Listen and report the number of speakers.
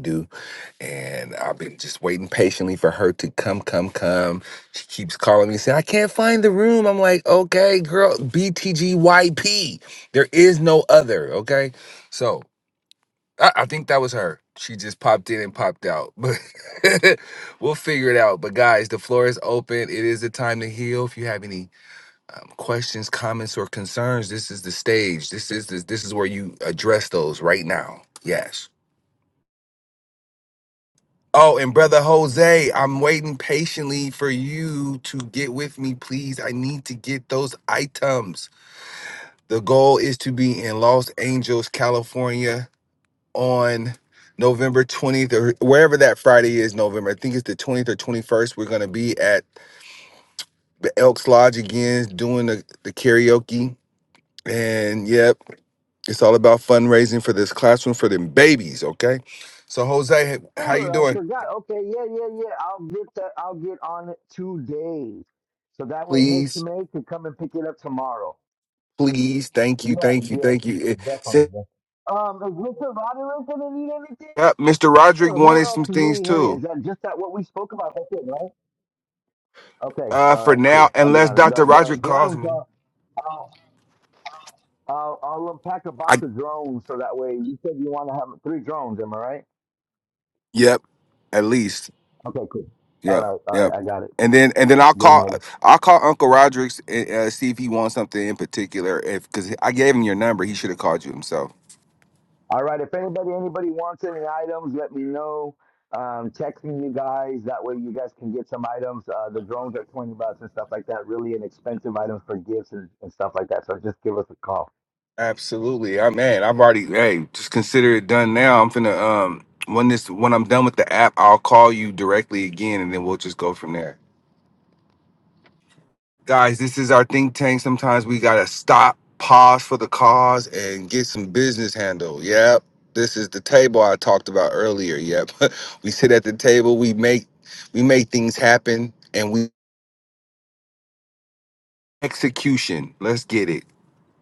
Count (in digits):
2